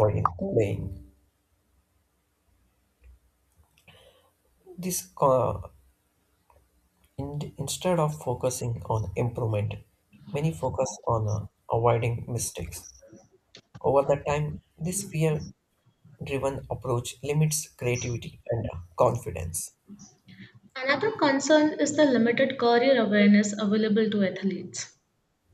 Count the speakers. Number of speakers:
2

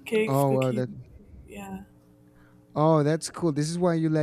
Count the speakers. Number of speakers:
2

